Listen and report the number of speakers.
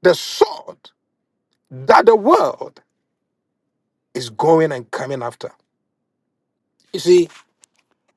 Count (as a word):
one